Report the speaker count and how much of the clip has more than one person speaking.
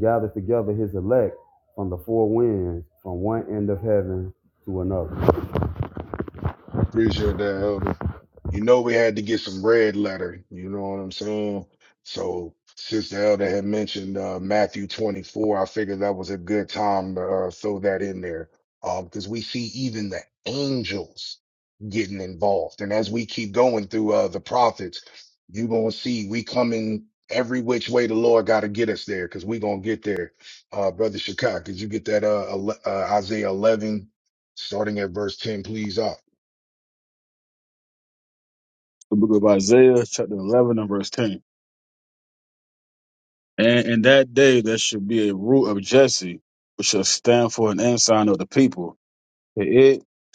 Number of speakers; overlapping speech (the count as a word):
three, no overlap